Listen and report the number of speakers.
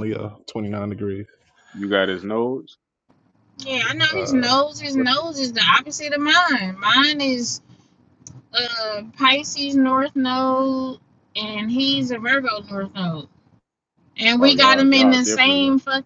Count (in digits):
3